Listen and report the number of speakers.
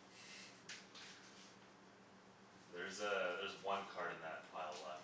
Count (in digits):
1